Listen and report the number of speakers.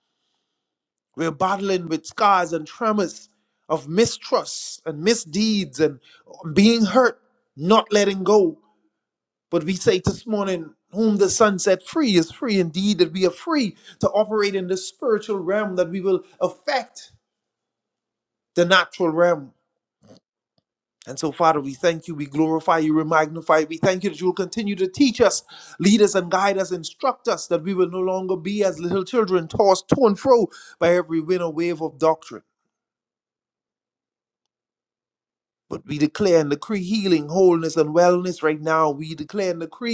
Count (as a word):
one